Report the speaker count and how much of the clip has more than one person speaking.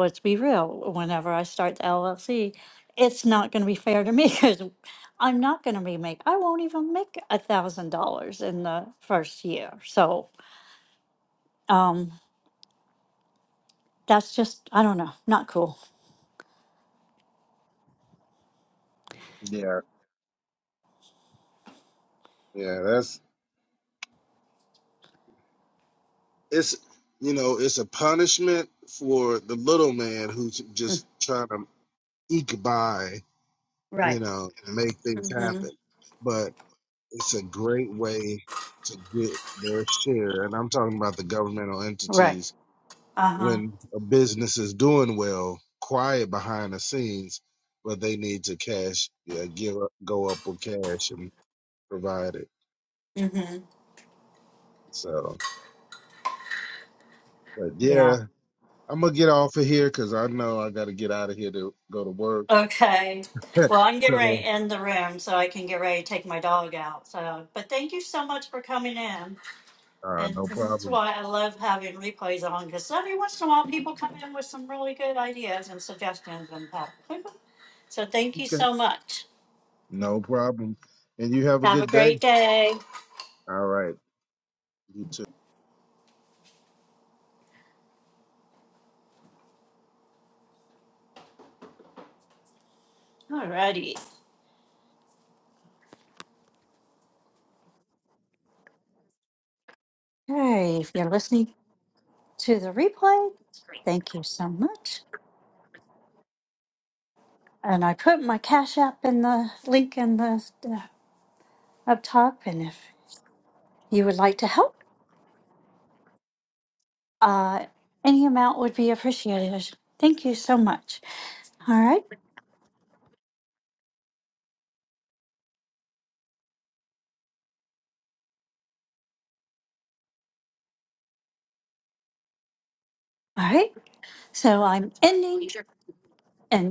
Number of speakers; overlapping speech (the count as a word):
two, about 2%